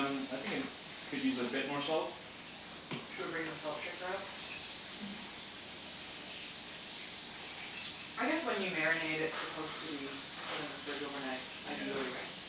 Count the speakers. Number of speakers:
two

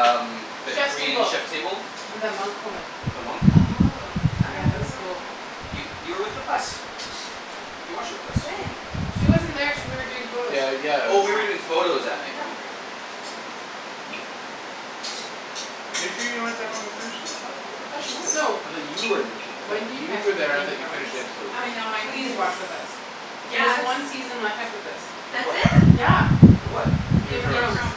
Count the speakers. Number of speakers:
four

